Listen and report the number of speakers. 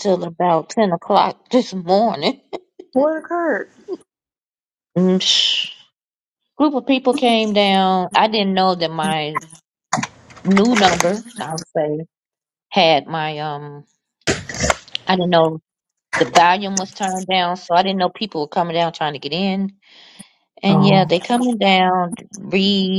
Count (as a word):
two